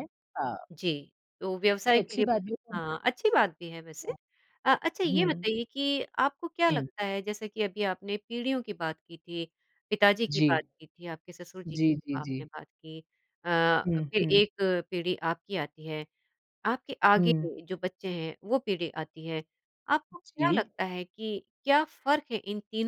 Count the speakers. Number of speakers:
two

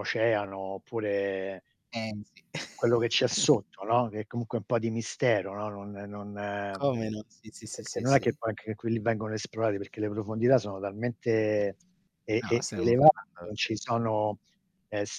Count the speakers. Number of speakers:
two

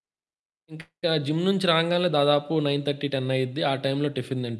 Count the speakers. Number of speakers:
one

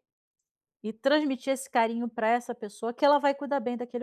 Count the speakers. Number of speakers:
one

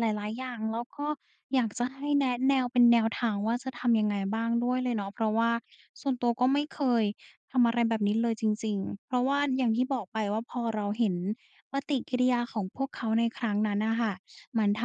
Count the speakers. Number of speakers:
one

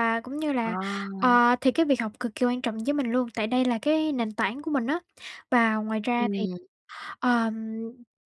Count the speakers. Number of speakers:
two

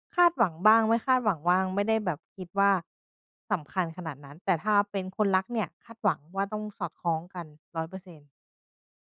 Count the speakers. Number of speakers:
one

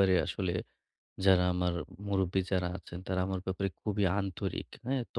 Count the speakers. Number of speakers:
one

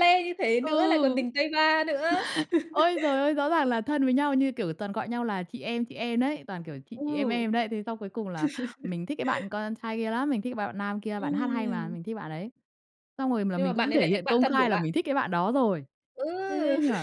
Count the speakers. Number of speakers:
two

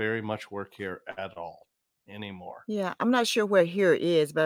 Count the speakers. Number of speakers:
two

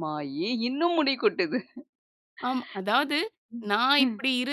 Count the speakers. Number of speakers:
two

